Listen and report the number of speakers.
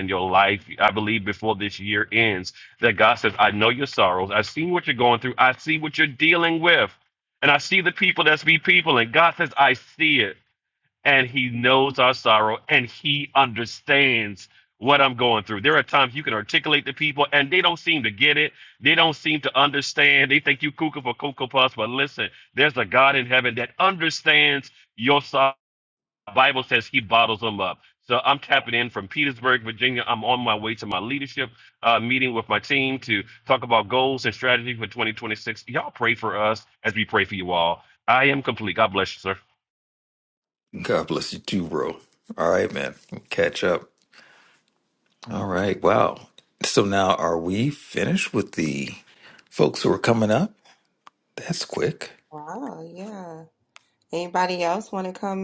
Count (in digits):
3